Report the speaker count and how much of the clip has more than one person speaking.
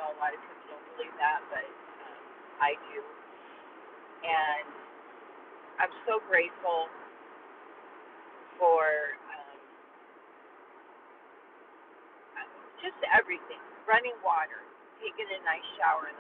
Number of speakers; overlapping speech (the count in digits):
1, no overlap